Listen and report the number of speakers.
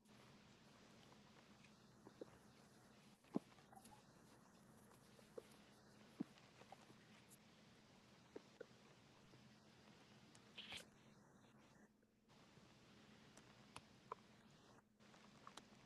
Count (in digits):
0